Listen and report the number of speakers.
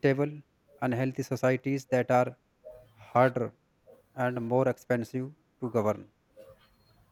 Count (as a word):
one